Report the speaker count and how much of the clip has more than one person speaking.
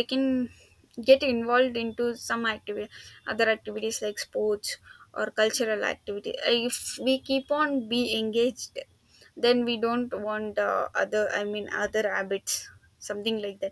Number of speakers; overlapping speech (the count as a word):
one, no overlap